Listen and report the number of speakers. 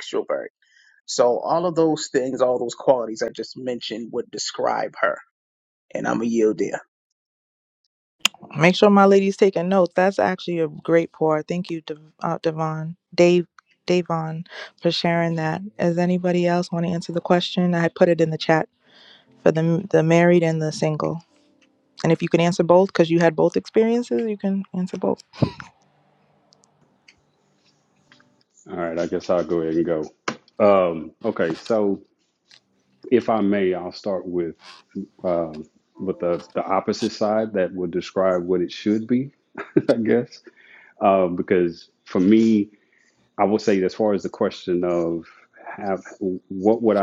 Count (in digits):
3